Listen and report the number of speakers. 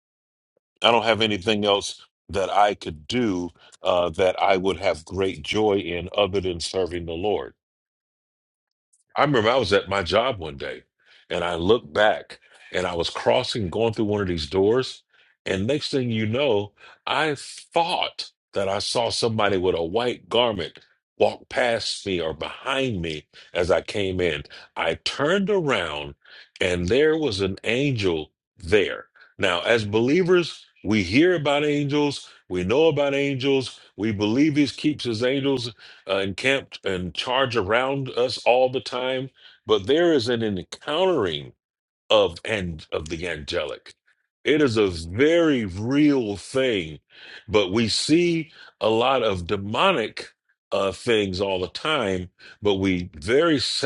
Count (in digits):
1